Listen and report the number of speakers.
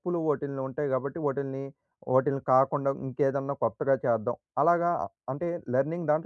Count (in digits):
1